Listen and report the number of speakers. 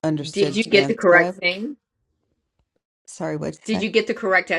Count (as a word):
two